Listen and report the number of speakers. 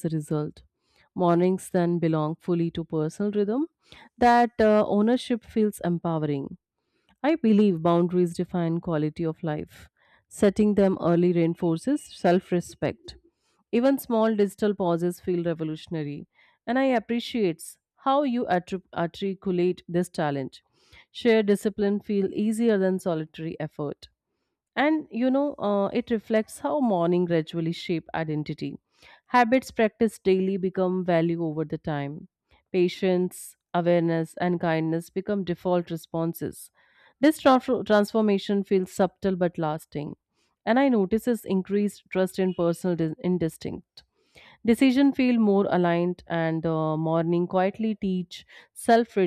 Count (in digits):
1